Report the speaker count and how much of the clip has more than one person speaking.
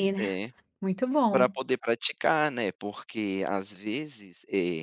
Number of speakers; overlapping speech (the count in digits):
2, about 11%